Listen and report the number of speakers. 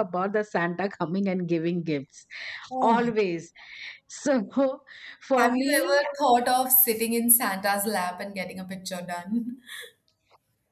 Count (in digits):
2